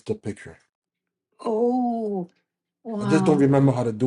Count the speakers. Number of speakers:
two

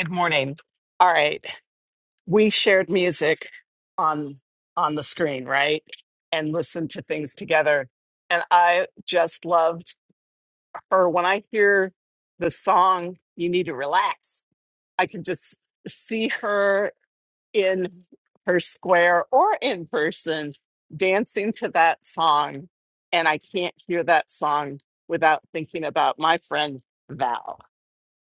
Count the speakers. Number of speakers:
one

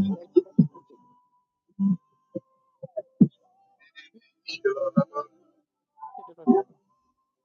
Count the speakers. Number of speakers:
zero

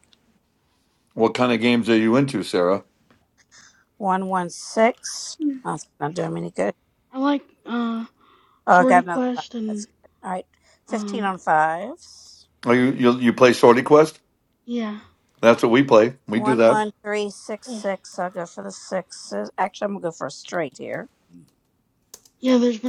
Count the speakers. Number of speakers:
three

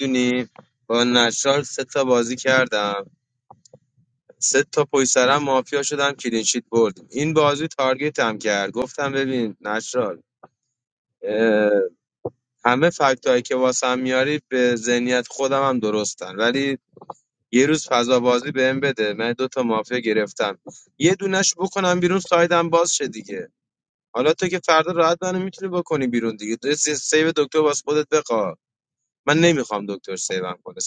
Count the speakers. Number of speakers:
one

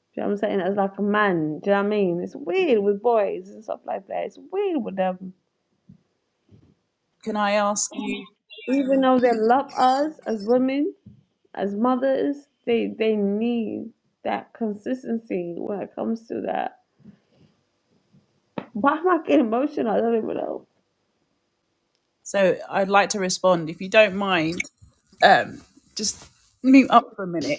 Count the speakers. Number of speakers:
two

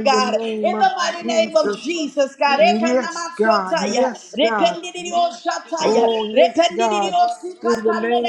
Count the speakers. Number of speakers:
two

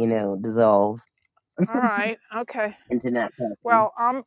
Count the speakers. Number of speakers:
two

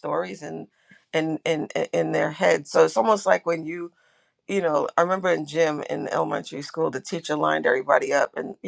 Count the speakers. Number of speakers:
one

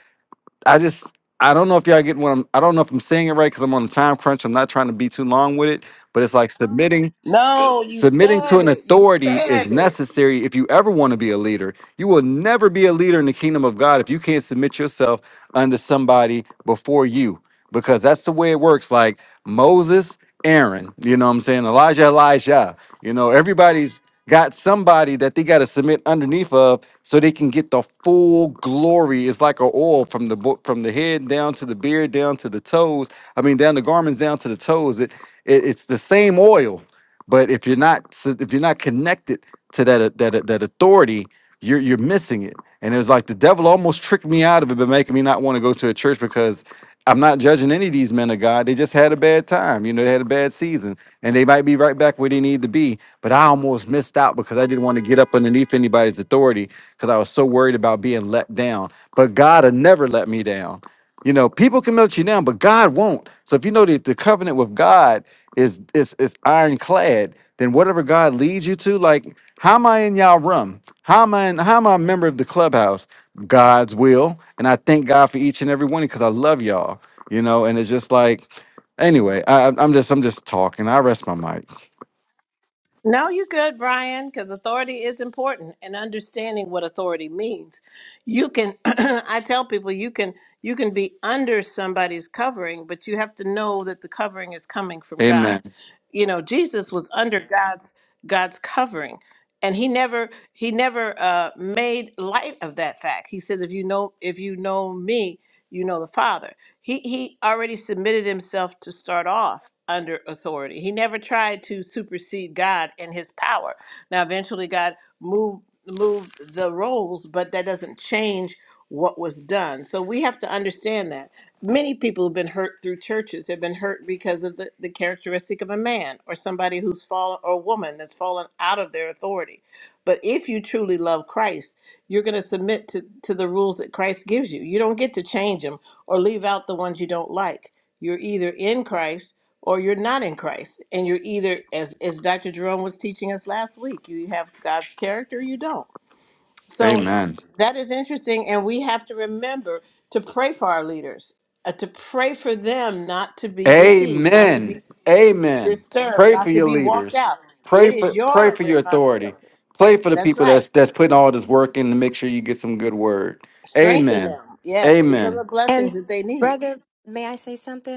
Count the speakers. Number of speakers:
four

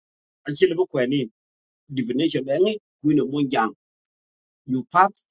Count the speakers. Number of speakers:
one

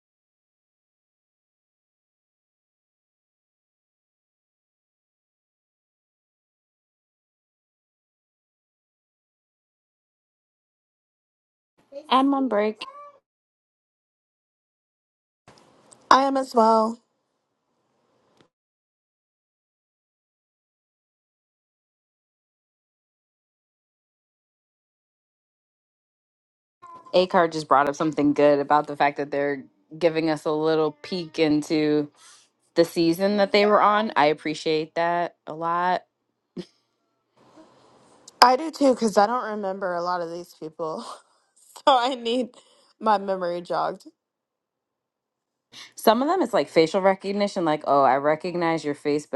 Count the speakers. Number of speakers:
two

